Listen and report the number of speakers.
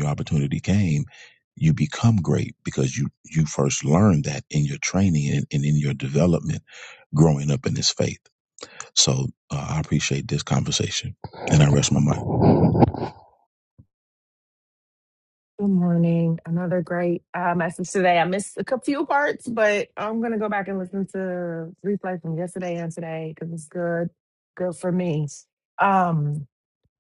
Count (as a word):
two